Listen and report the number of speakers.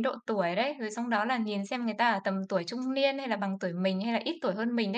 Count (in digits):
1